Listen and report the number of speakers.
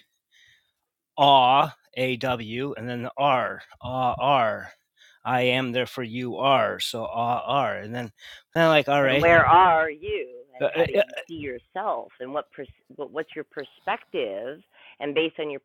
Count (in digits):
2